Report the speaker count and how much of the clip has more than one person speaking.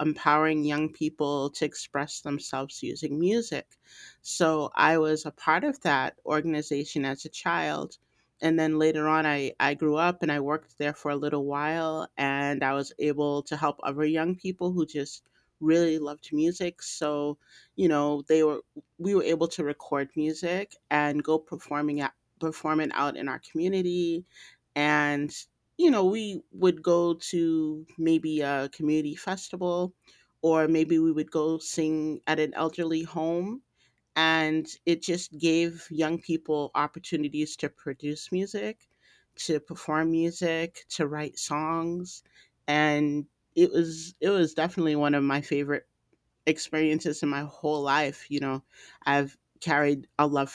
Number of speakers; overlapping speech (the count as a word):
one, no overlap